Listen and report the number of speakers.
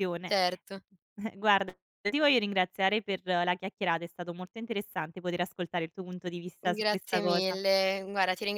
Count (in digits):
2